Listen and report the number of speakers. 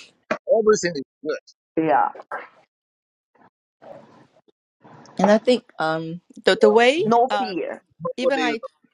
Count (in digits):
3